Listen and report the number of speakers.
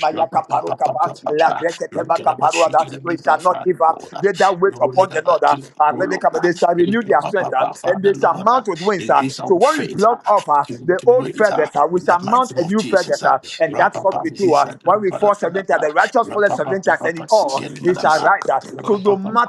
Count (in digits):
2